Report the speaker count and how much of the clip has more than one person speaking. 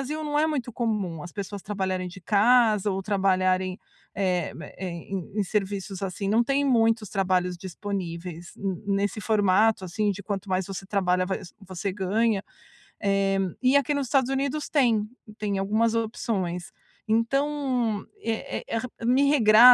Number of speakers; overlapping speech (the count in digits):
1, no overlap